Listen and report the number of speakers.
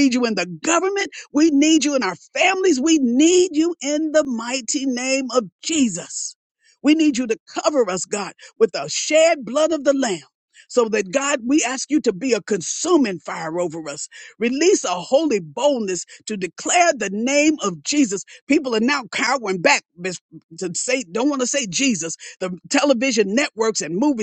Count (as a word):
one